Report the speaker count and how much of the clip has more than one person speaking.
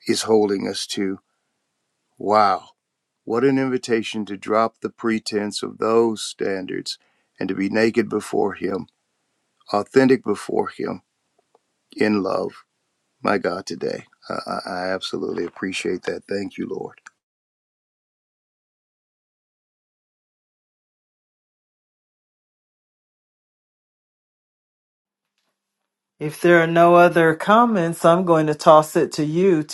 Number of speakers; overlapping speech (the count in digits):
2, no overlap